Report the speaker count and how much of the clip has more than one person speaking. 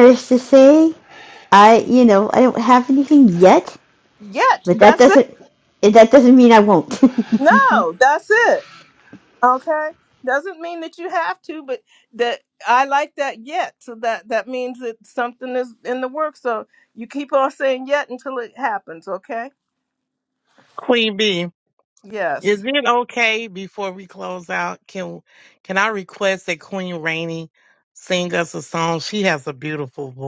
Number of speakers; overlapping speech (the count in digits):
3, about 2%